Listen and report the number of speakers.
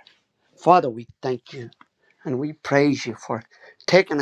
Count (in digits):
1